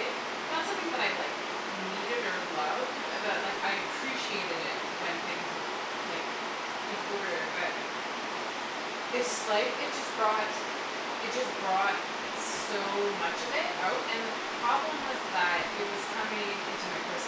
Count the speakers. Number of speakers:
1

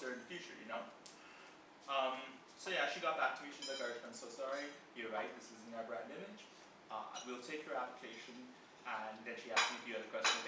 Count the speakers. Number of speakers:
1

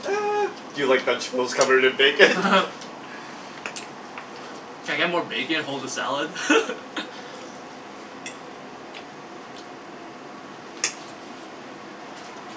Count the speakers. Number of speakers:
2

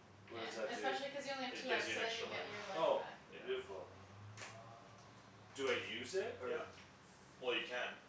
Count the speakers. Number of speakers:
3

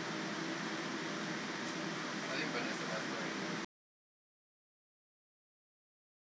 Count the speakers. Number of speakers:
0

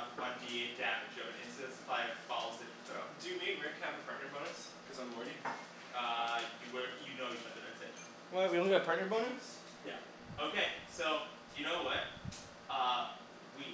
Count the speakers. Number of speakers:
2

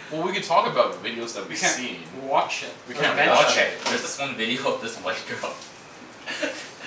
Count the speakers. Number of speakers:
3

